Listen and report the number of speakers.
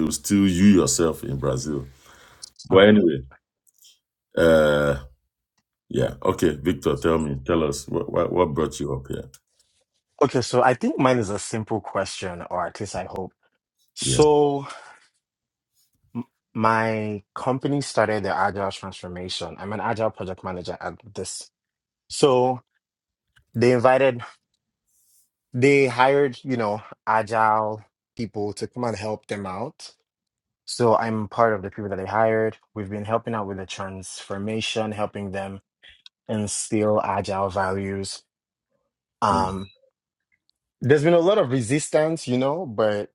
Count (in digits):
2